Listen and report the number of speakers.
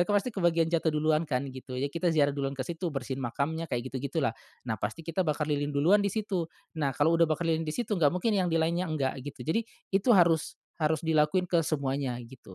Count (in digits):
1